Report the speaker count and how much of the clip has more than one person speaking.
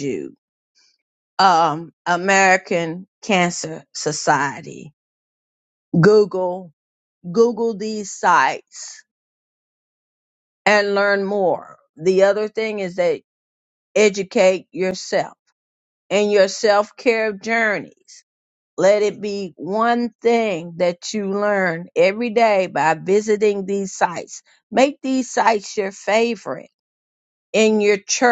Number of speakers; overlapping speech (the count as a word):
one, no overlap